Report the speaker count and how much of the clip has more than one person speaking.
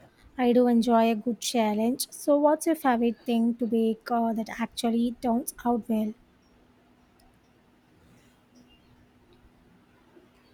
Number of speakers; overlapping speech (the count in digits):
1, no overlap